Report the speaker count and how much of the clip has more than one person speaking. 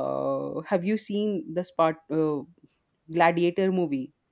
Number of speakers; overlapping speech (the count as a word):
one, no overlap